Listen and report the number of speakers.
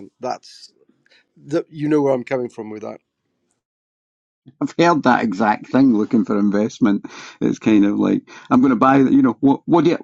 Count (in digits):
2